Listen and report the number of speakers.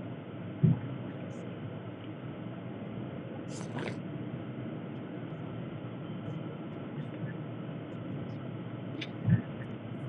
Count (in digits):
0